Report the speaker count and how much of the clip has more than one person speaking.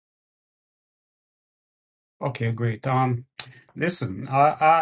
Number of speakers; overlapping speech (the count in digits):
1, no overlap